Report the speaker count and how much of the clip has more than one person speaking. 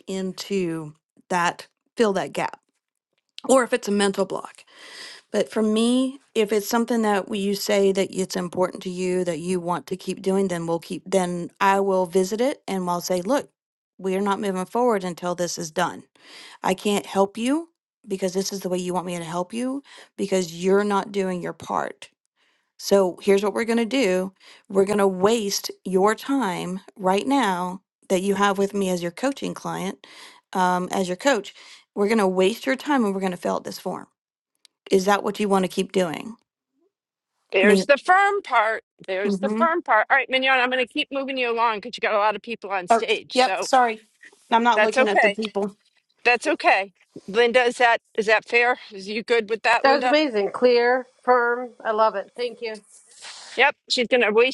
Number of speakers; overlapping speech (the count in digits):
3, about 4%